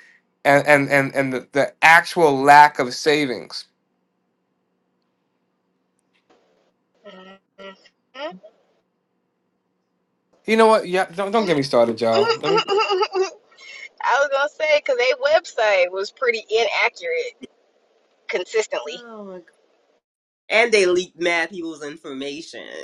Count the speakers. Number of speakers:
3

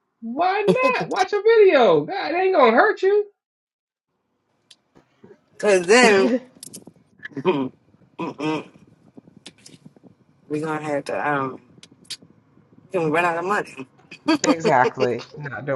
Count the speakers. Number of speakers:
3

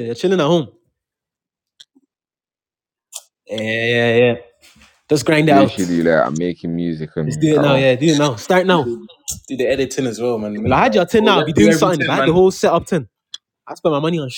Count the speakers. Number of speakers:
3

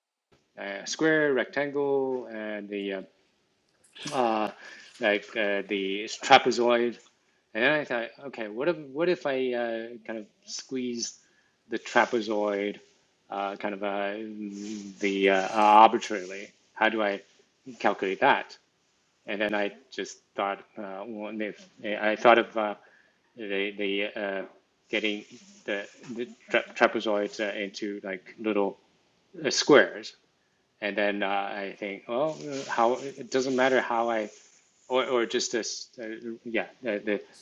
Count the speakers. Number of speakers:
1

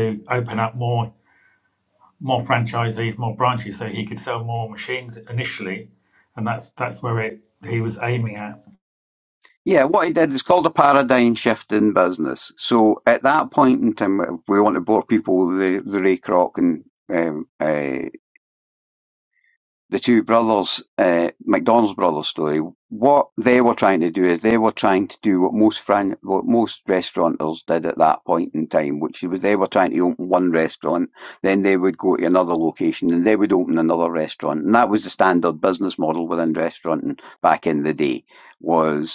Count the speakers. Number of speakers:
2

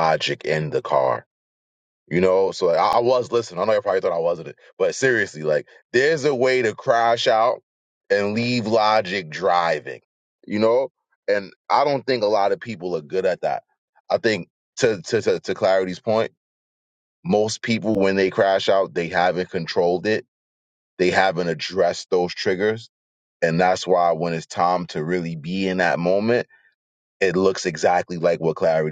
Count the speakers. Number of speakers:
1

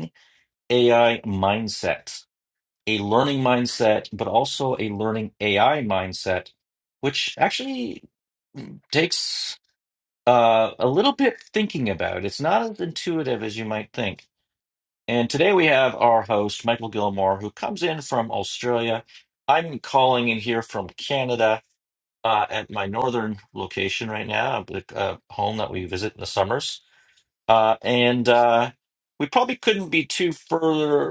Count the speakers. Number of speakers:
1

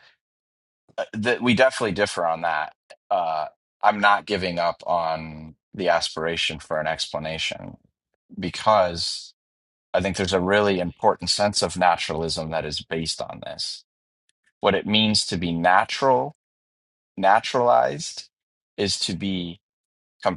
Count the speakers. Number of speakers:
1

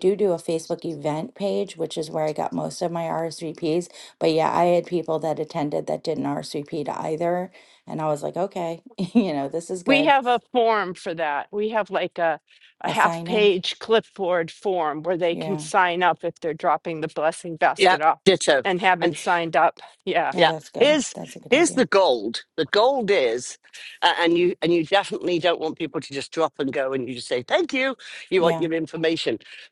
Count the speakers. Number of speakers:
3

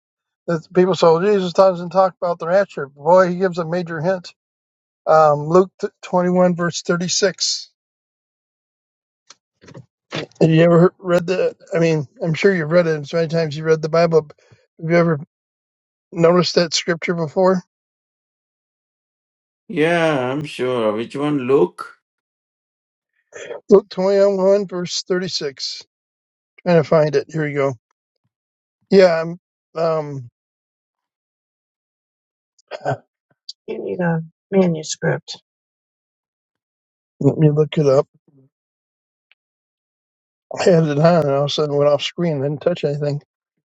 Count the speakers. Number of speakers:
2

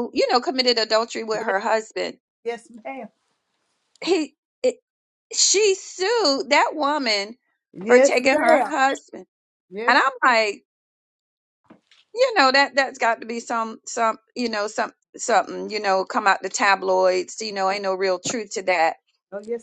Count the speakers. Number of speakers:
2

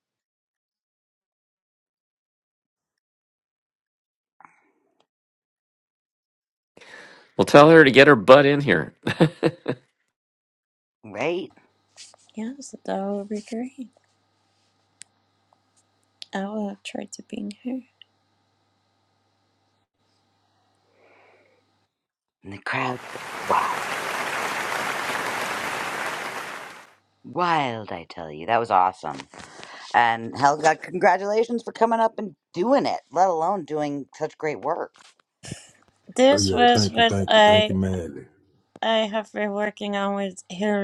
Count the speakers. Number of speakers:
4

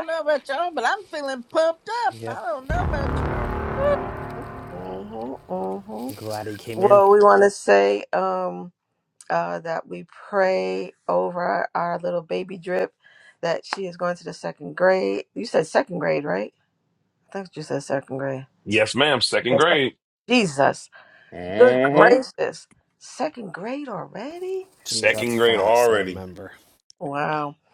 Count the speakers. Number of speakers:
4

